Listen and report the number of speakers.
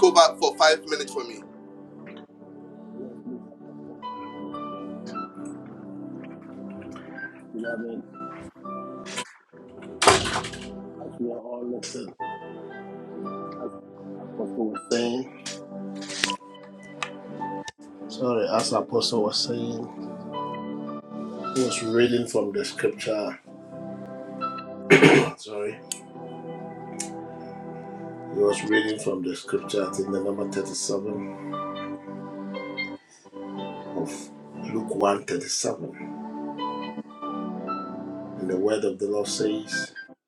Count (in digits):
2